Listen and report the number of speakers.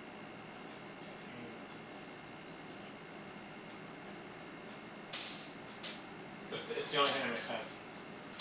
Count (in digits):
1